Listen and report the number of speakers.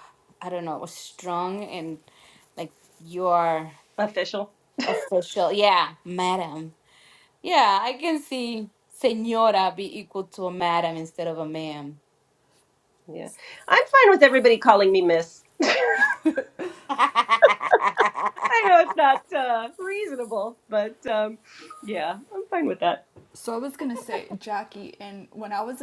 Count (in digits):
3